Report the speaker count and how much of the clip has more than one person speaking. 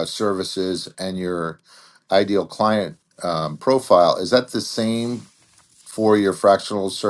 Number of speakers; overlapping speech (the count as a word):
one, no overlap